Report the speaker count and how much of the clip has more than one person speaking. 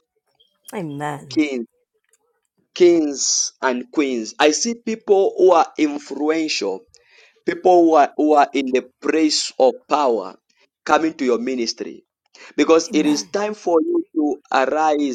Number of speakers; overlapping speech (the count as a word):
two, about 3%